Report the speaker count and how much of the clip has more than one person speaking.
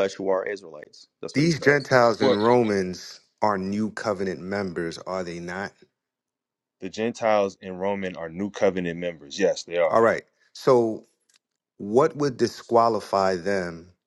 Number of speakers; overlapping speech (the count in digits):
3, about 6%